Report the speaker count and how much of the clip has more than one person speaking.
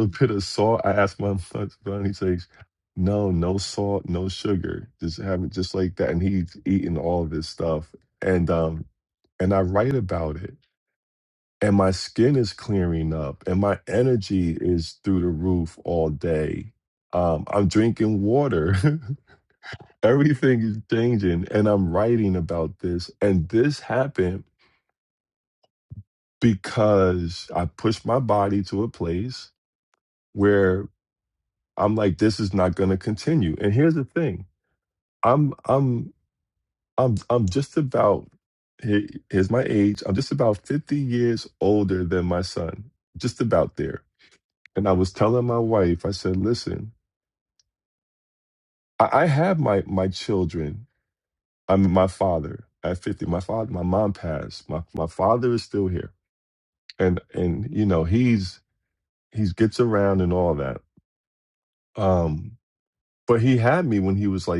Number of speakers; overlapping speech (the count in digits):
1, no overlap